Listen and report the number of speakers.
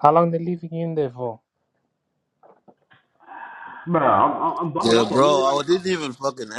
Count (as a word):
three